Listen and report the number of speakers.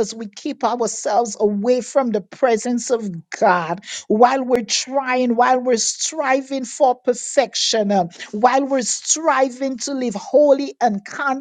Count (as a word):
one